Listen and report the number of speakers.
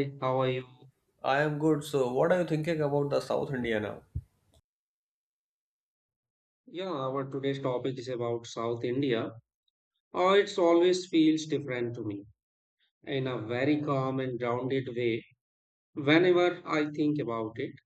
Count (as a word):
two